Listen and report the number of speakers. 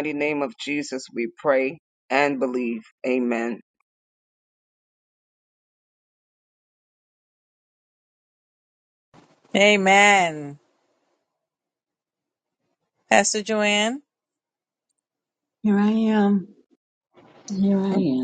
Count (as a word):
three